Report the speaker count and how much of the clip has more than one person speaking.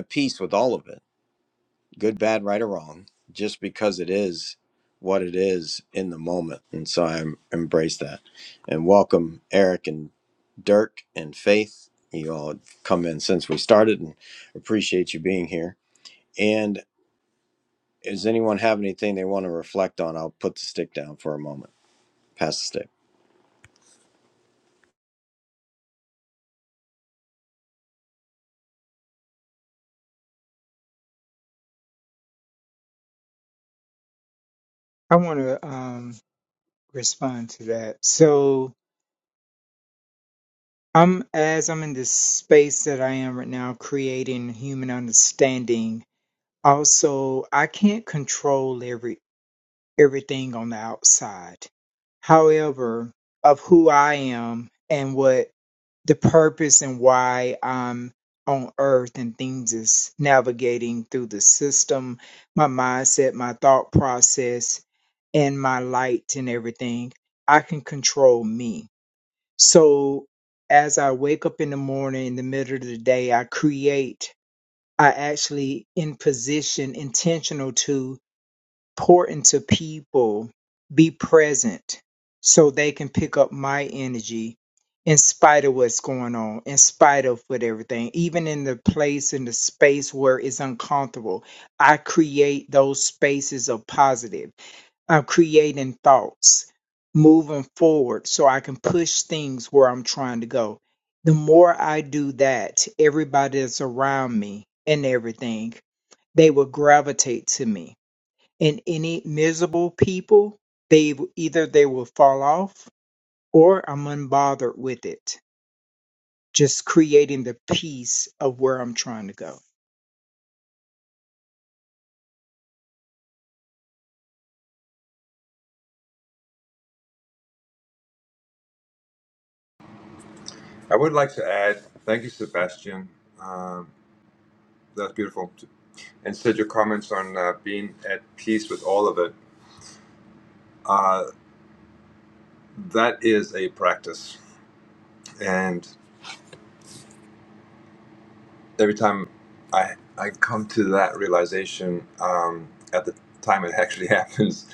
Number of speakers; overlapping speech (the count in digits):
3, no overlap